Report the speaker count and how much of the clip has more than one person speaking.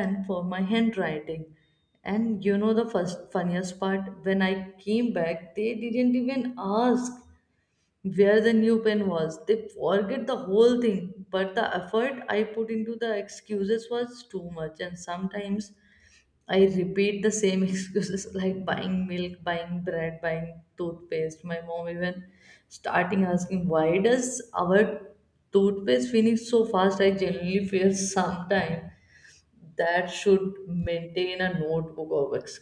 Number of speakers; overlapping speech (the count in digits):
1, no overlap